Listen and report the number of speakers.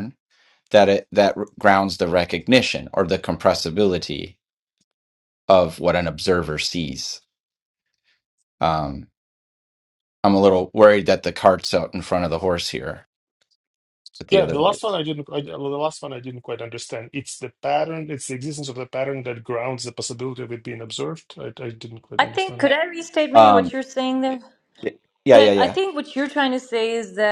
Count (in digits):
3